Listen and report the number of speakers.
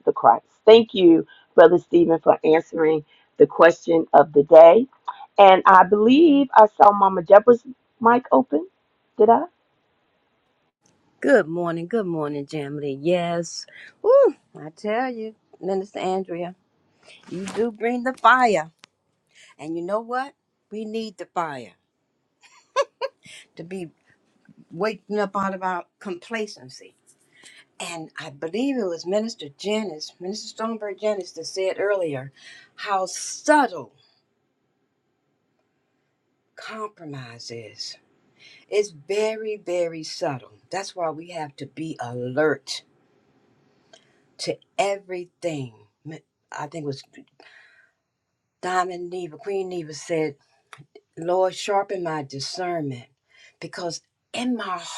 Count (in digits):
2